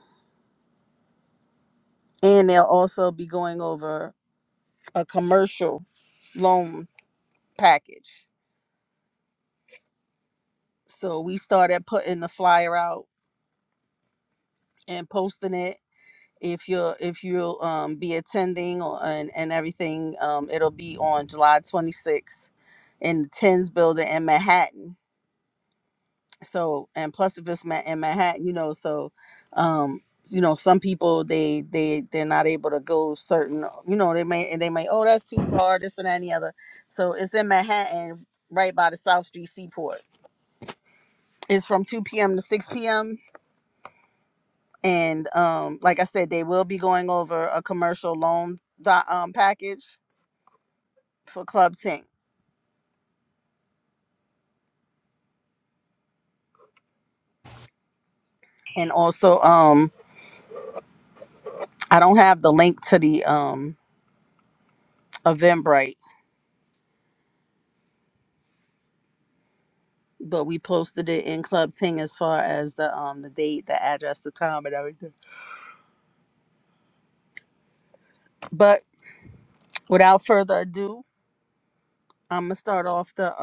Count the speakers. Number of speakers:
one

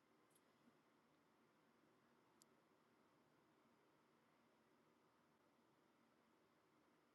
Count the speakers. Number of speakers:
zero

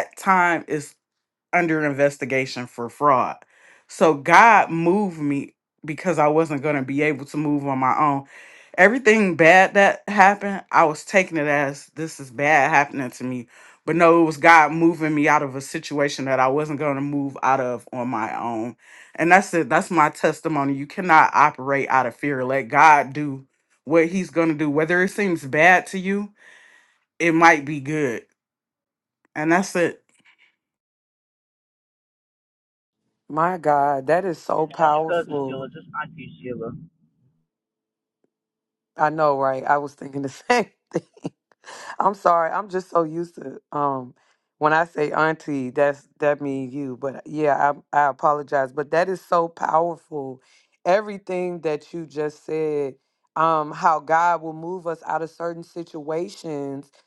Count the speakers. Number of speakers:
three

